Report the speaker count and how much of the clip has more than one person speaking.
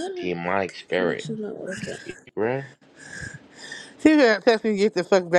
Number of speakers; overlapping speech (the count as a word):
three, about 7%